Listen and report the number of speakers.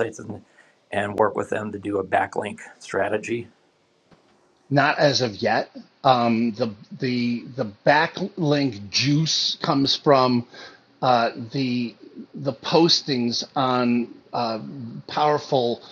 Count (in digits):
2